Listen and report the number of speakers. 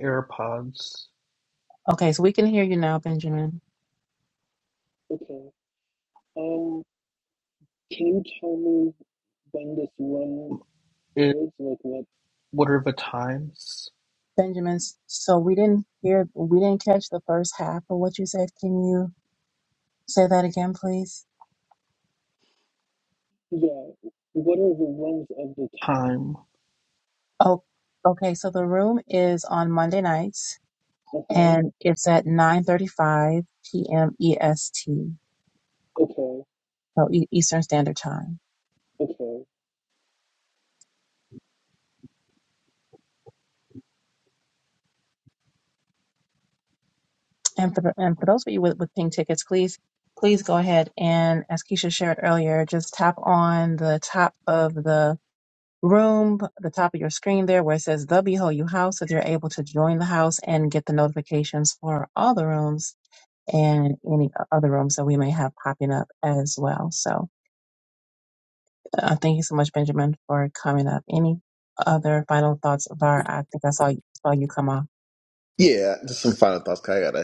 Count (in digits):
3